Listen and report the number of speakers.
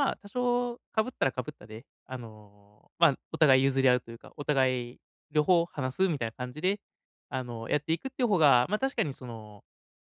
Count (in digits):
1